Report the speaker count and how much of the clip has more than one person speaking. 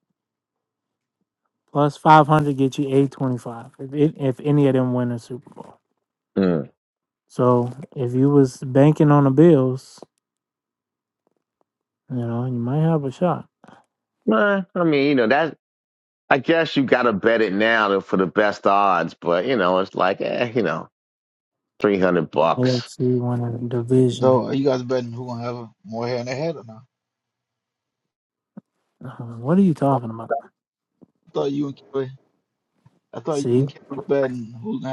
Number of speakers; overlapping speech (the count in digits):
3, about 2%